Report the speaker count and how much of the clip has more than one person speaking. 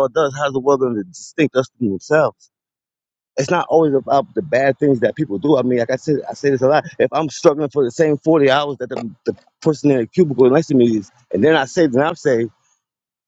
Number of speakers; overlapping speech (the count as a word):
one, no overlap